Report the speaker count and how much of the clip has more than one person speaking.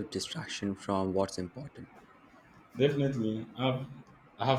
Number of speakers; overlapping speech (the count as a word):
two, no overlap